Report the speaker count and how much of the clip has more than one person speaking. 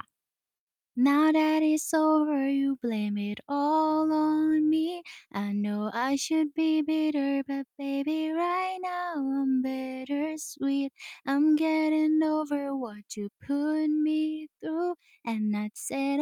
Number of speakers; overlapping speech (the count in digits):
1, no overlap